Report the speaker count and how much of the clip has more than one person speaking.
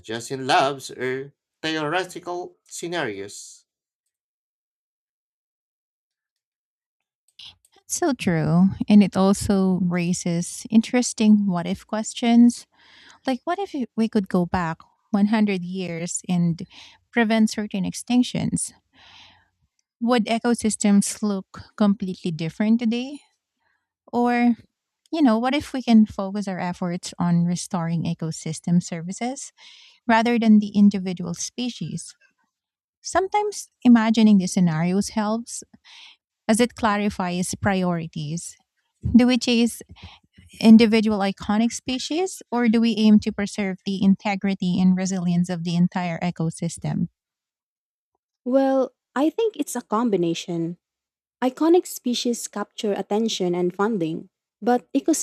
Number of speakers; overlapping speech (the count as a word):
three, no overlap